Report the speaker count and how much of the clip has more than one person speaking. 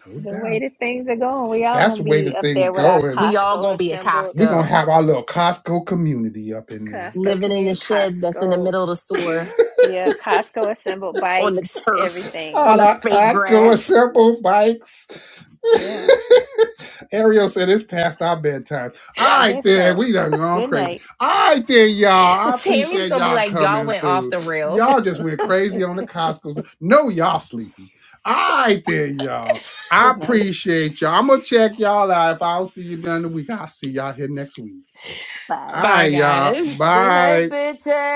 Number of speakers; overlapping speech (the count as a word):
four, about 35%